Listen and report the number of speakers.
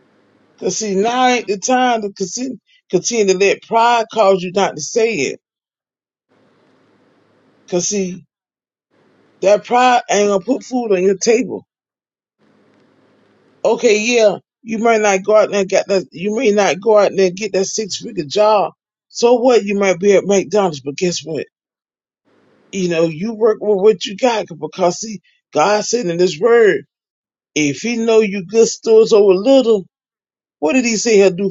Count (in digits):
1